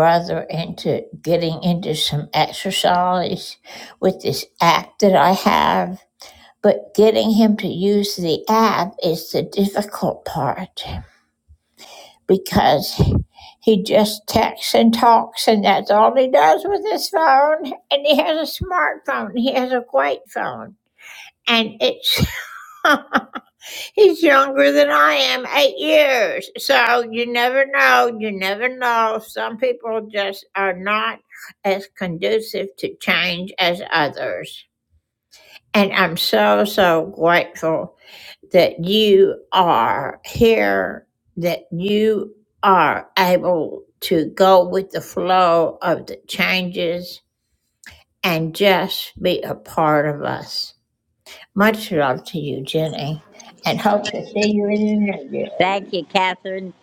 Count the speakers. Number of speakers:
2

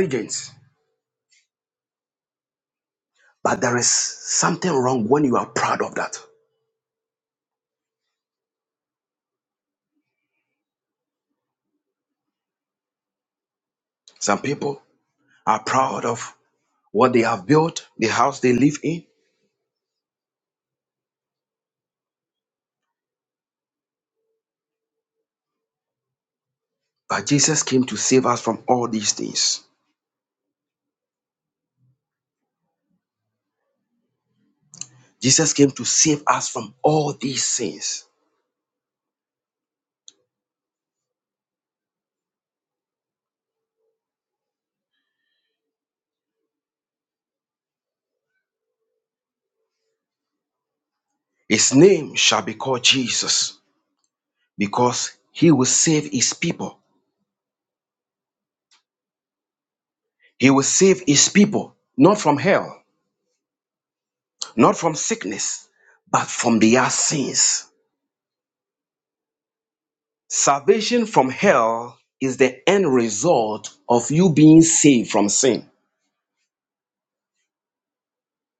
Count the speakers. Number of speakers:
1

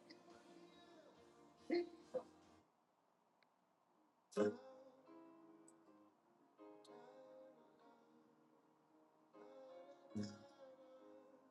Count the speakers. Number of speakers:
0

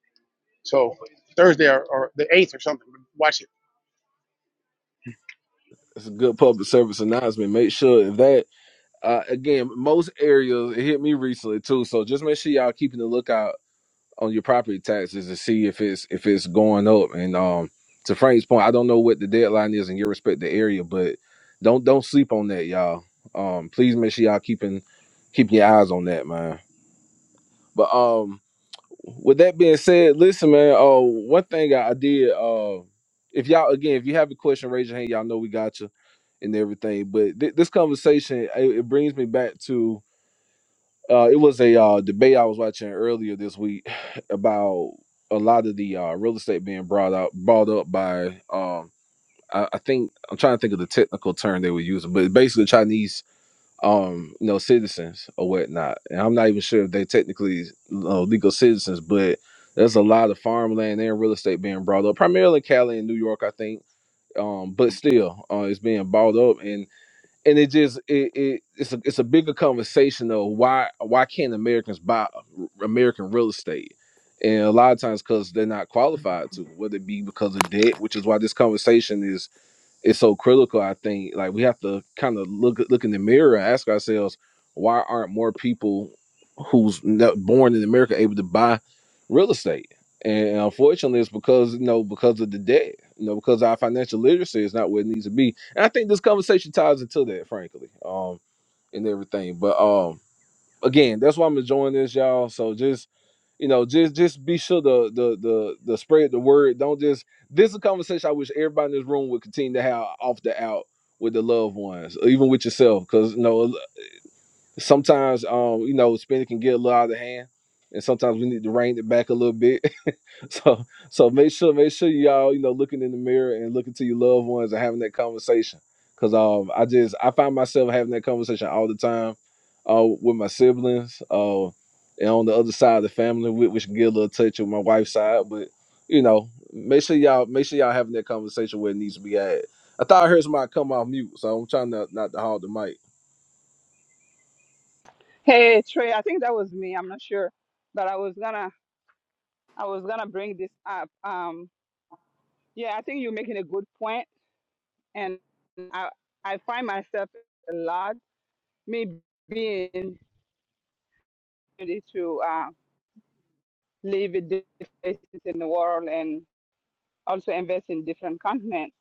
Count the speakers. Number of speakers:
3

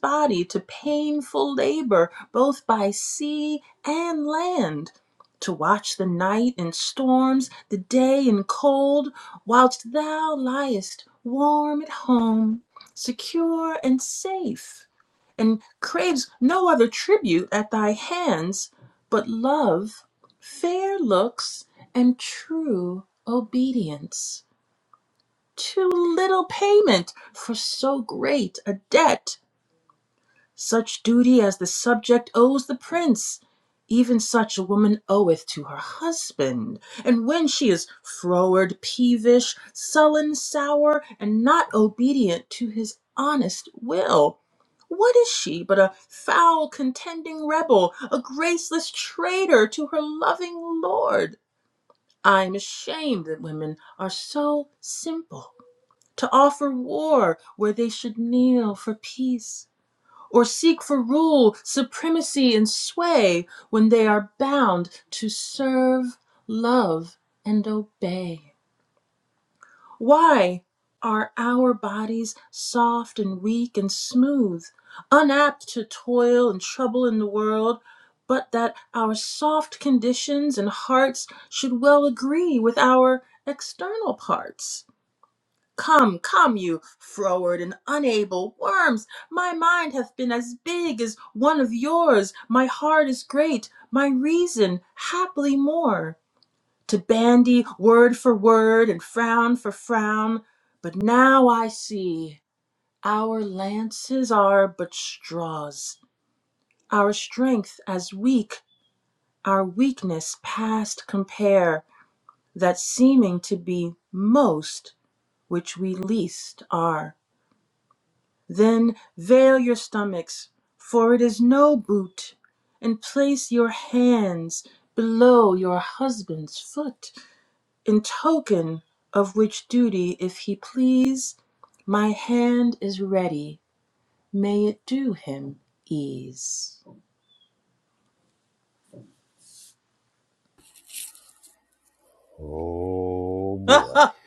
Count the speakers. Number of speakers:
2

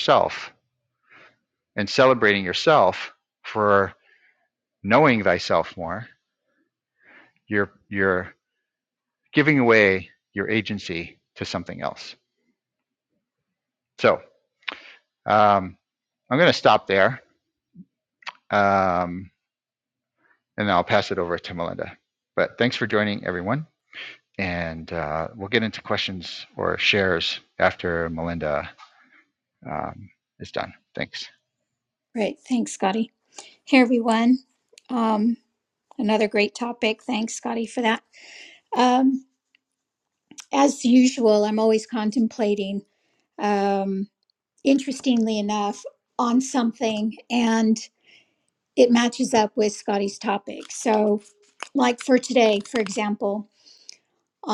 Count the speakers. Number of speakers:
2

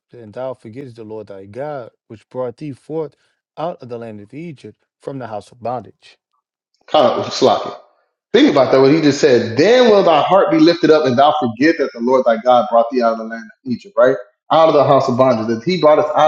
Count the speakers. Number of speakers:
2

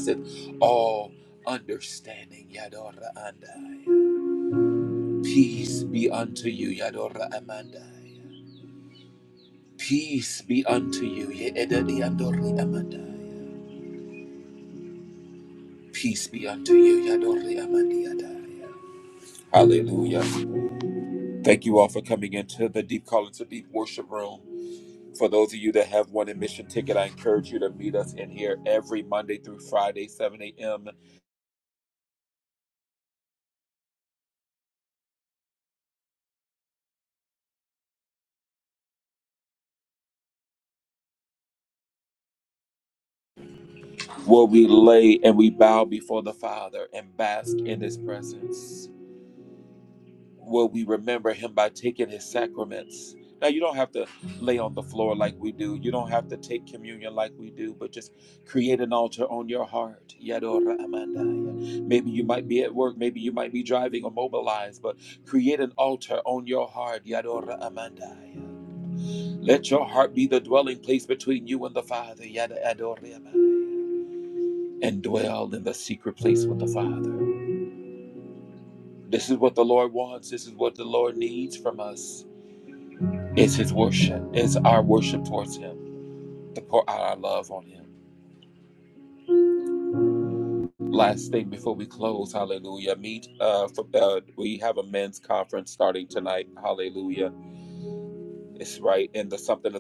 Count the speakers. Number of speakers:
1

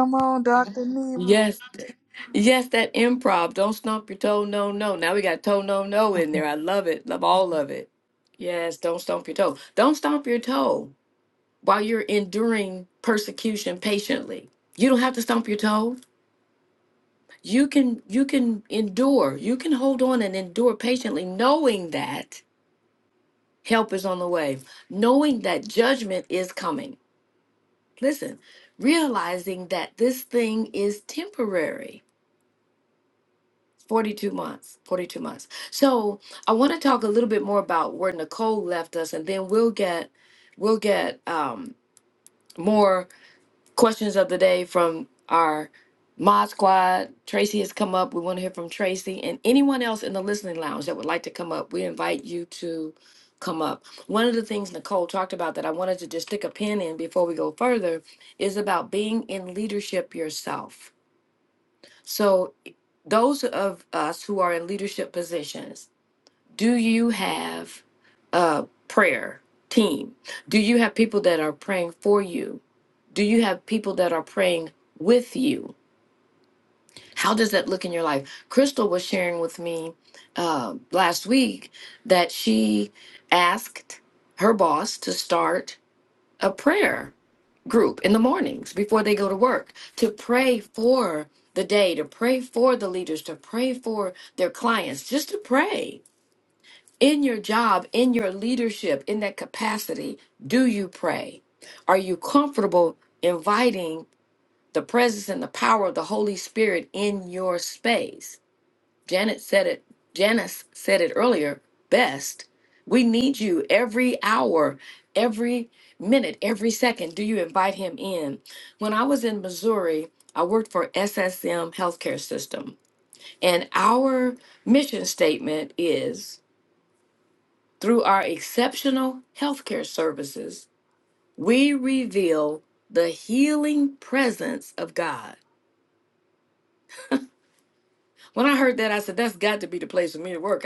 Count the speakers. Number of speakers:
2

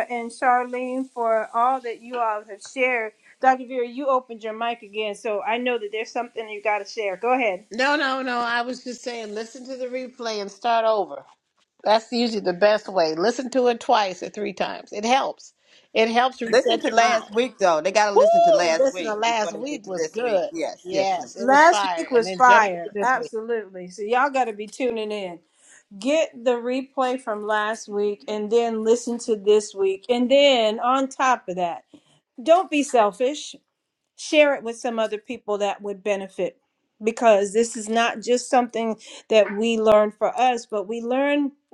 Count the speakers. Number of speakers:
3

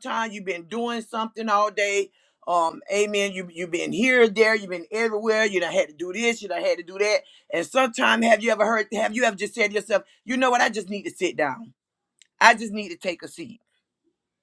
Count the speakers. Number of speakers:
1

